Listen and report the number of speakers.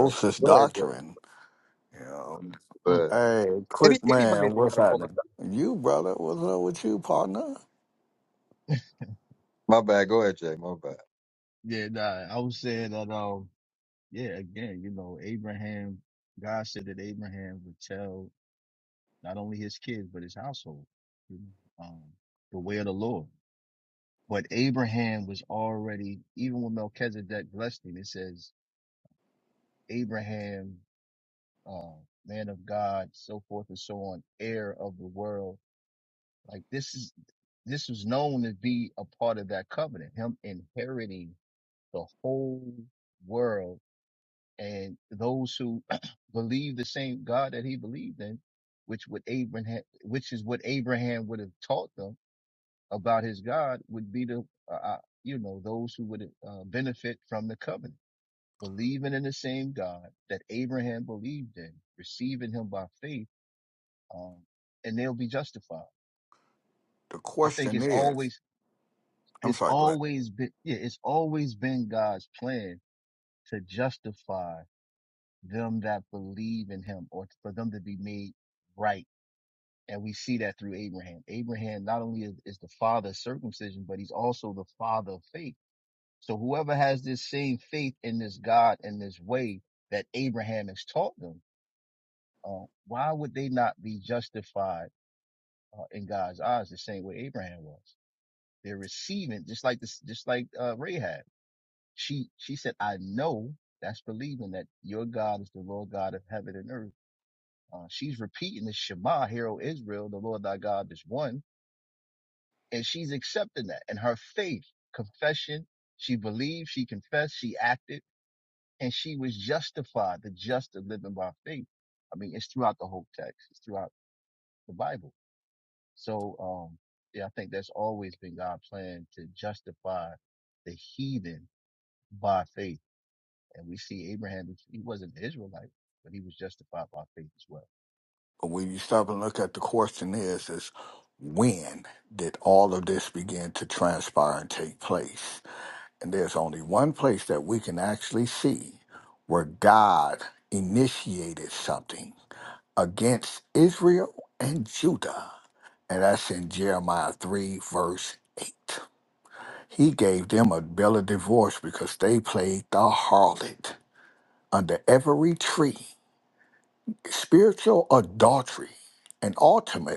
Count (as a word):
three